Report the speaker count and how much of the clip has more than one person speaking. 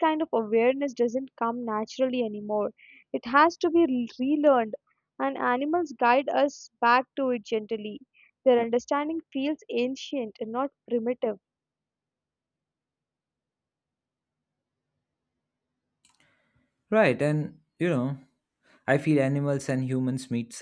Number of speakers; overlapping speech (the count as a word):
two, no overlap